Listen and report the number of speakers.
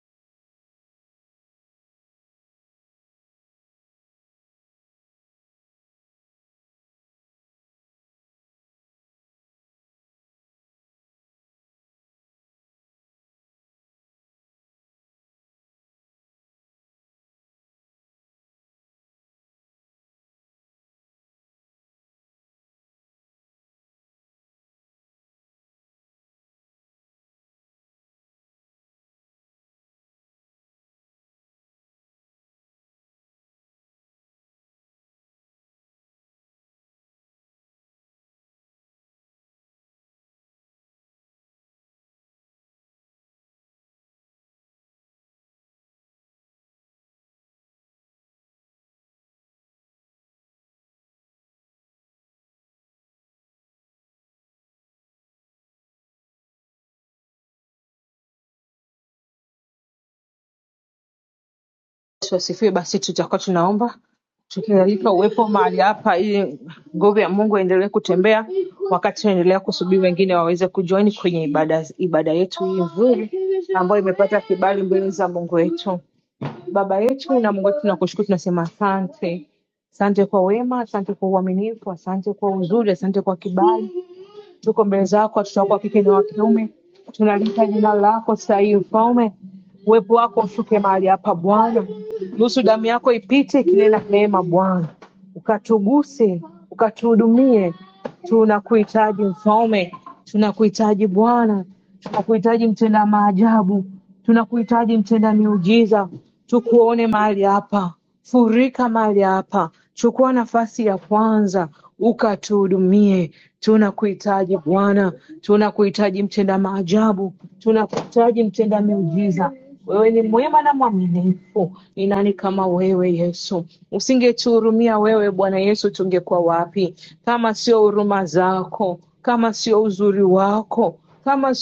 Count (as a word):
one